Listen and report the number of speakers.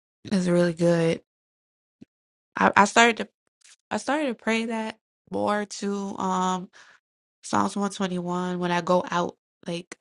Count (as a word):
one